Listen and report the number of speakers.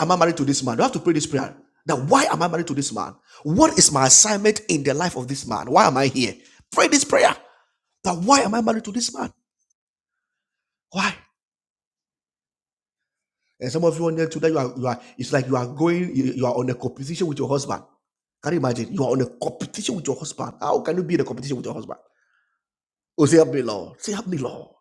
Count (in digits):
1